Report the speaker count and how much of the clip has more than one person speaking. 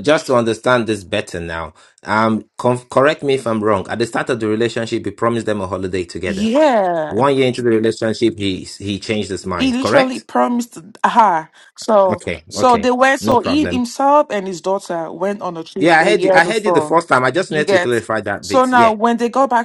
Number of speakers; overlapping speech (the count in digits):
2, about 19%